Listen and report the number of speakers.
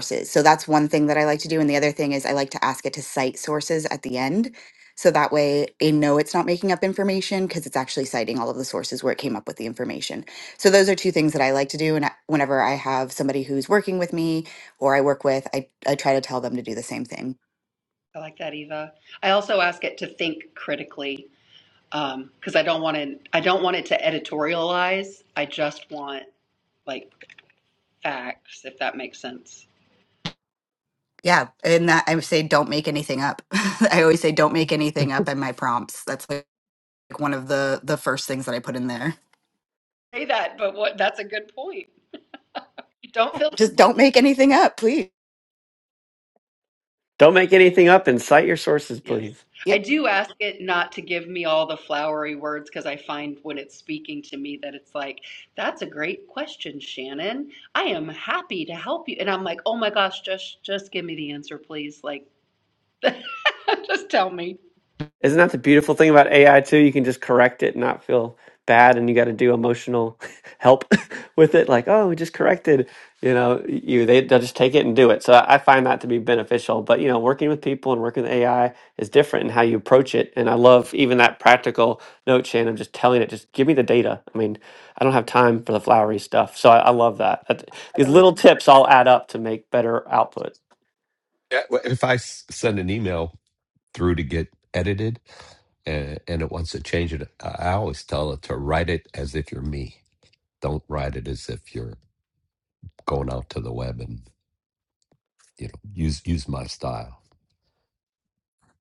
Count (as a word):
four